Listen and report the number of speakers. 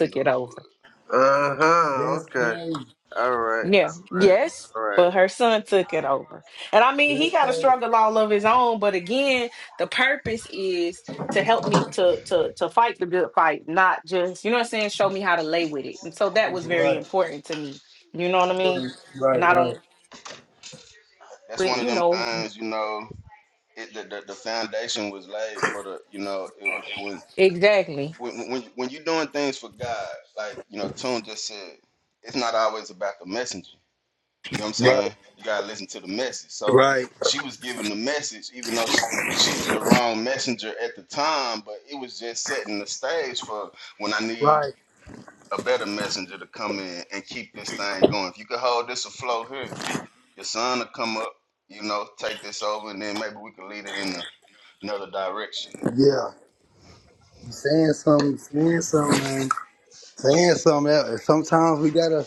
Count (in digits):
4